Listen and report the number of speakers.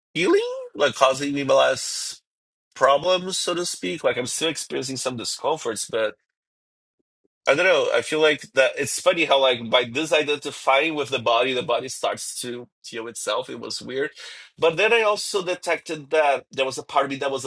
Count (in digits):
1